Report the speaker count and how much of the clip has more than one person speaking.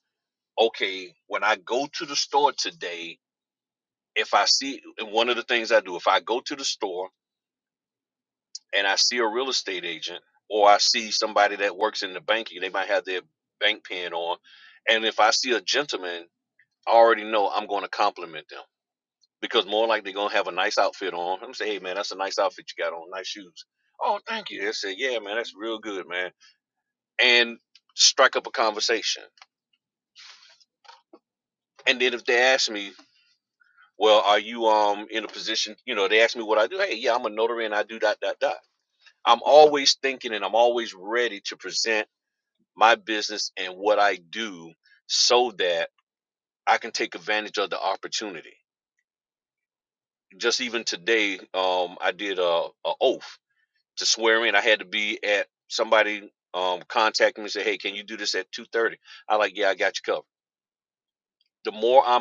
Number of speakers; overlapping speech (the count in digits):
1, no overlap